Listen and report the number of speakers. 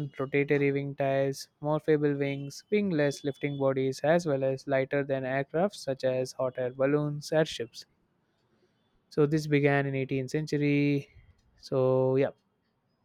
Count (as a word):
one